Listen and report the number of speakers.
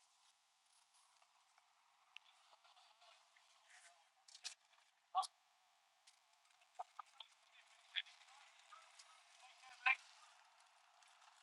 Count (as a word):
zero